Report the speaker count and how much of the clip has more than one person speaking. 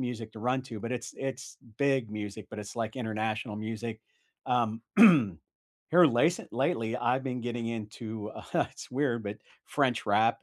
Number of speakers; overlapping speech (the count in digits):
1, no overlap